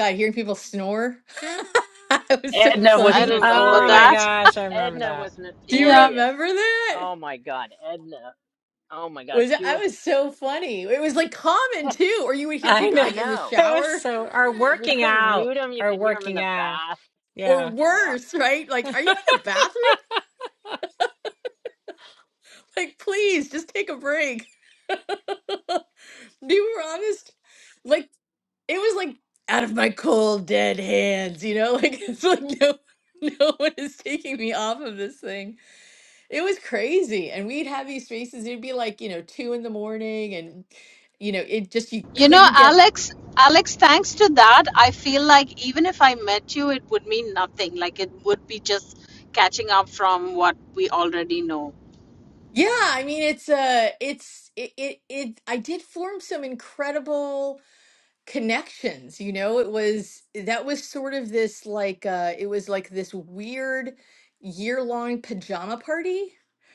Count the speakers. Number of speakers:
four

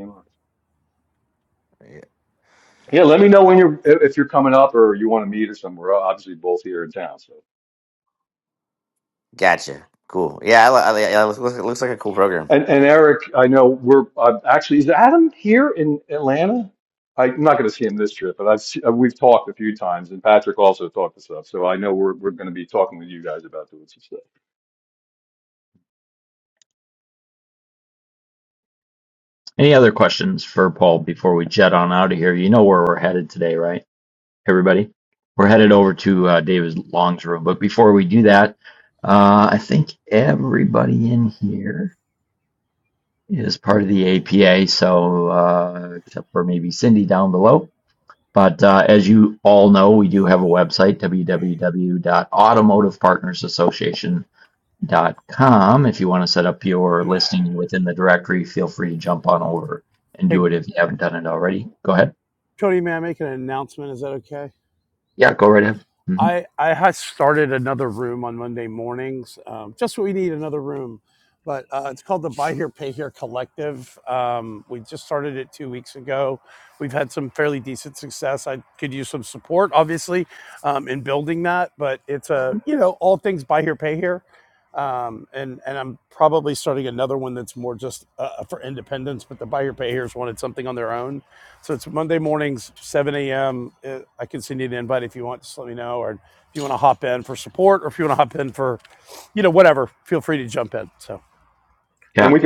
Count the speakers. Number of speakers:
four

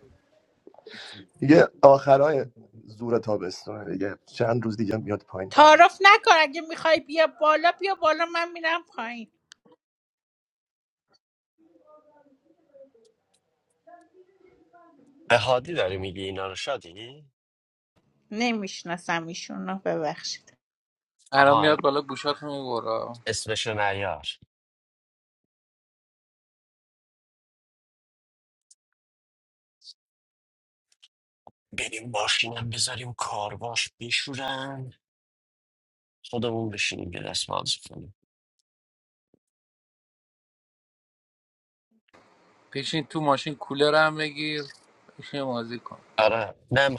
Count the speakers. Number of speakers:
four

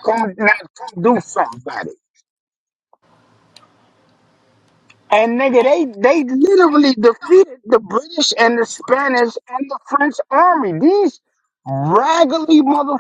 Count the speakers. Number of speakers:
one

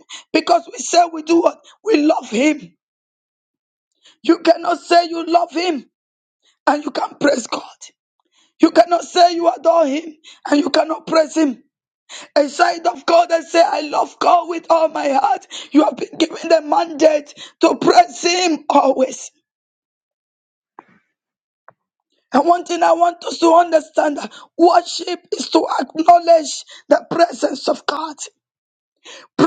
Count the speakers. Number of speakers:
one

